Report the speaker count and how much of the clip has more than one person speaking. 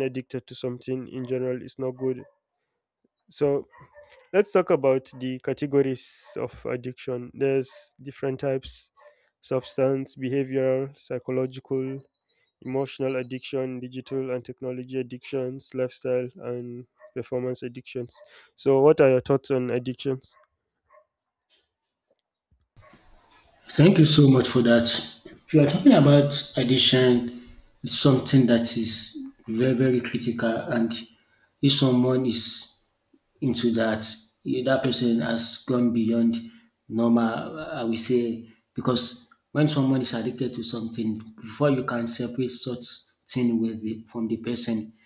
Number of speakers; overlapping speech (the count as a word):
two, no overlap